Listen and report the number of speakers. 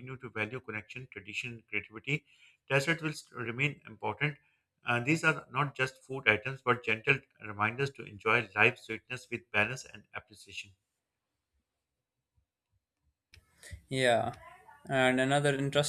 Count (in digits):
2